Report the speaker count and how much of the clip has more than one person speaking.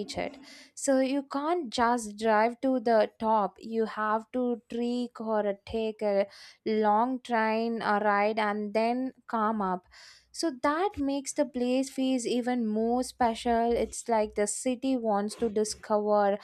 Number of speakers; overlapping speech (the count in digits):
1, no overlap